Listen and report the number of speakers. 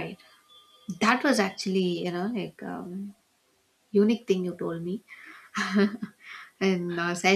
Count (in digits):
1